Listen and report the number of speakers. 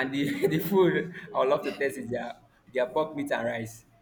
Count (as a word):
one